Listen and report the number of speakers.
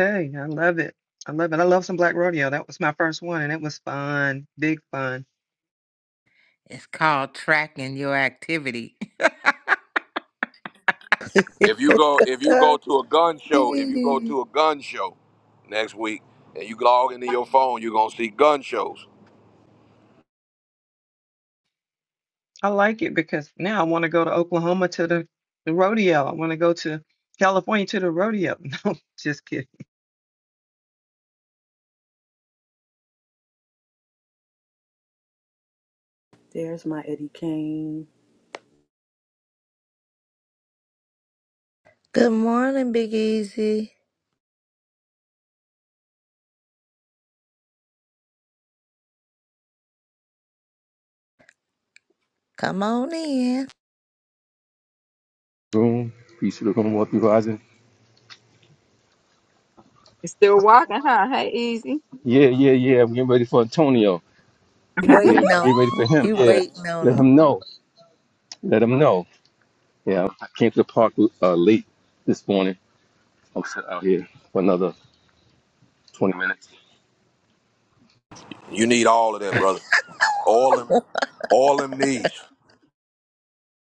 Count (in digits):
7